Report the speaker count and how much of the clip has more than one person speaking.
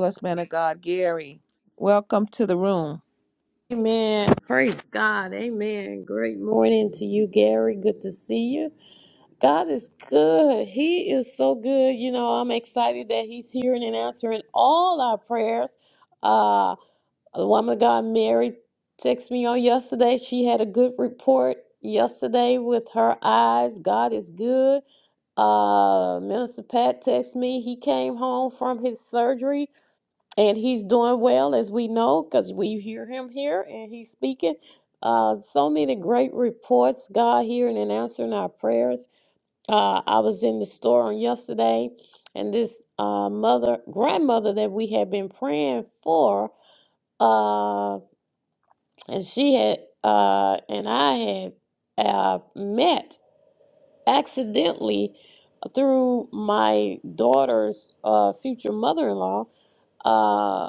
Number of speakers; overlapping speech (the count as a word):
two, no overlap